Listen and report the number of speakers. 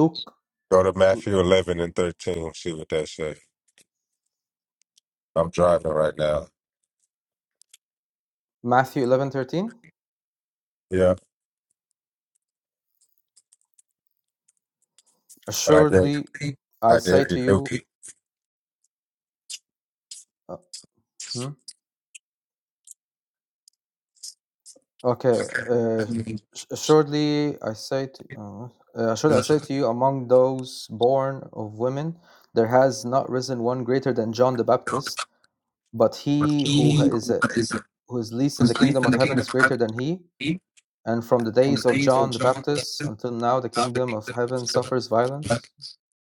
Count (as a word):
two